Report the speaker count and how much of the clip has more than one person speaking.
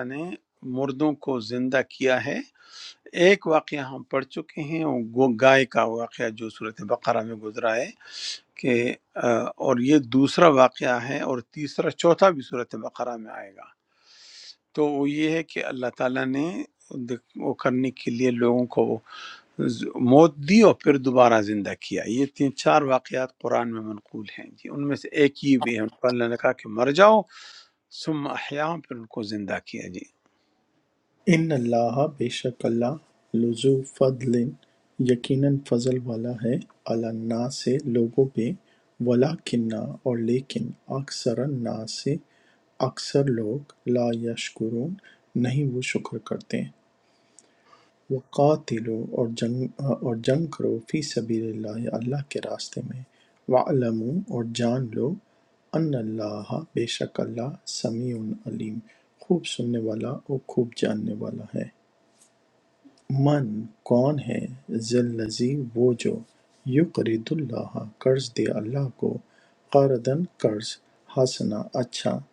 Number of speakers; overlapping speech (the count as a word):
two, no overlap